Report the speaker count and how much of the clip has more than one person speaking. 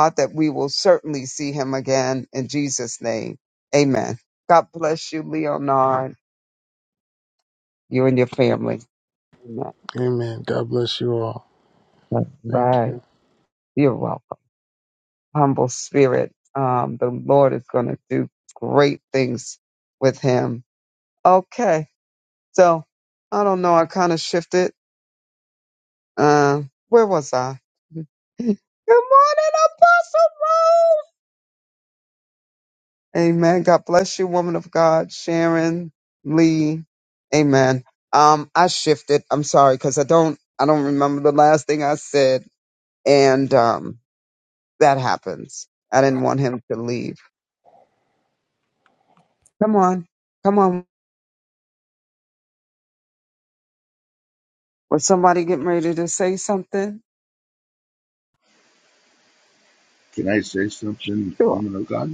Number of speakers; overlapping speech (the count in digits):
3, about 1%